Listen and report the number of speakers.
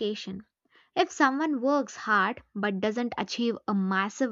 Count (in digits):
1